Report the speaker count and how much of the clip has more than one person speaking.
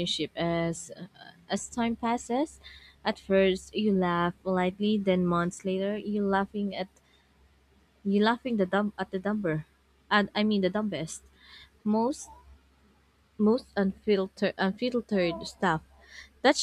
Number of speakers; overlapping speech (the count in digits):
1, no overlap